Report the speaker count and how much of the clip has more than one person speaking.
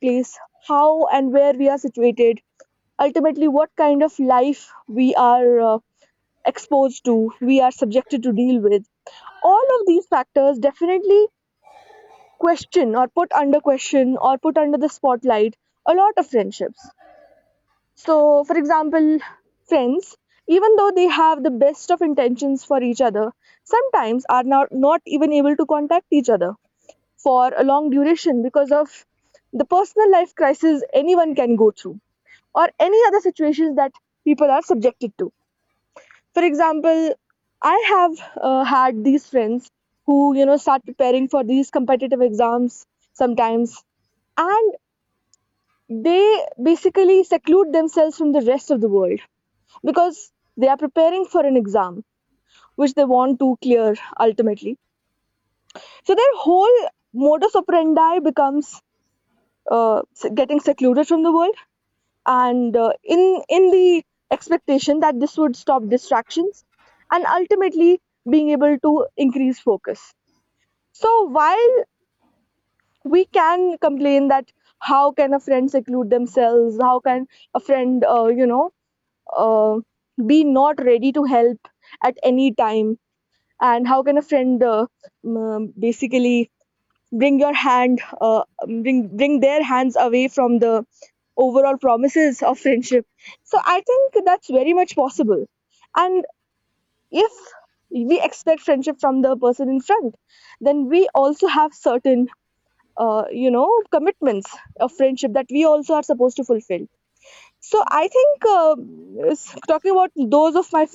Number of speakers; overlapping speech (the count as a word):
one, no overlap